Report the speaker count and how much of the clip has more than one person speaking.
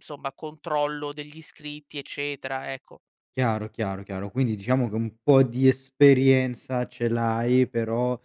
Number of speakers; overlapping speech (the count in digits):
2, no overlap